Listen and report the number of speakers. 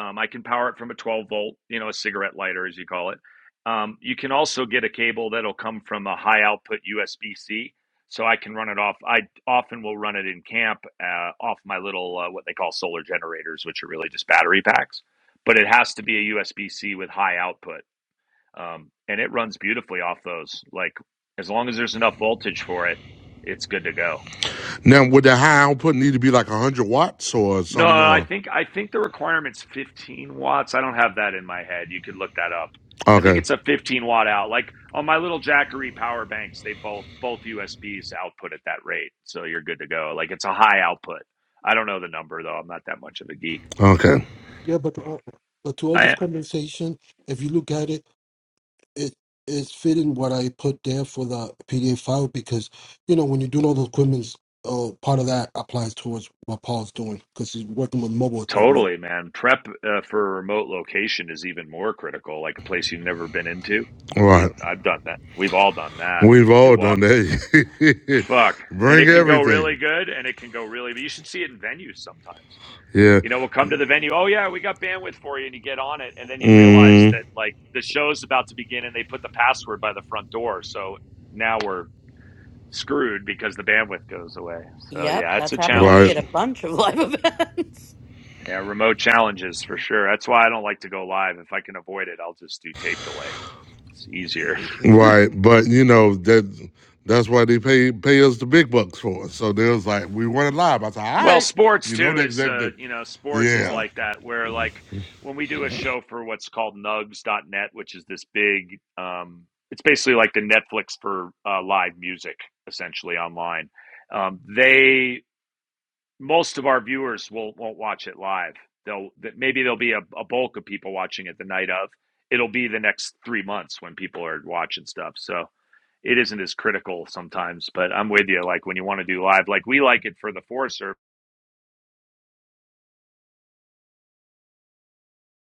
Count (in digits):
4